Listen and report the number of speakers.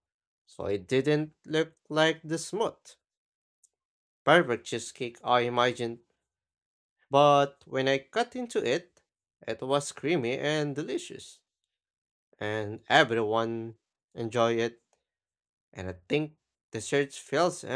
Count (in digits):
1